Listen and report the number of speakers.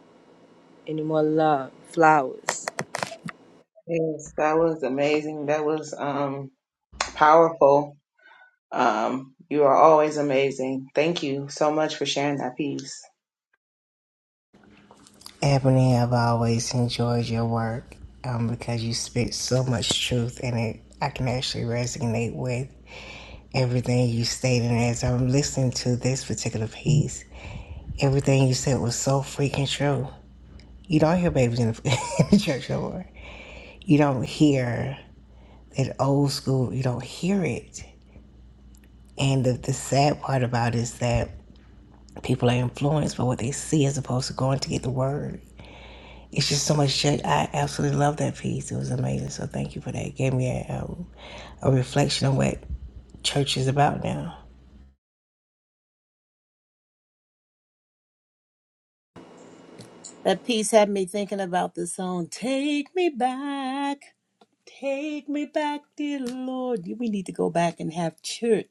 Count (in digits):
4